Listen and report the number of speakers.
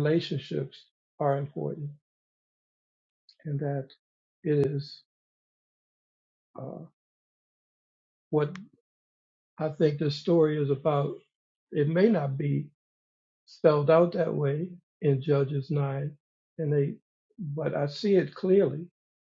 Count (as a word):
one